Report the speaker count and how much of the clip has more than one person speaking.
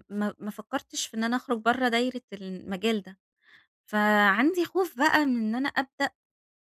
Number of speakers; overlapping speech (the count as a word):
one, no overlap